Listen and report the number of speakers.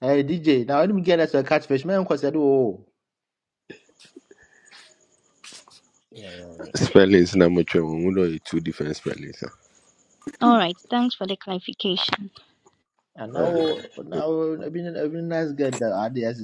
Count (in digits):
3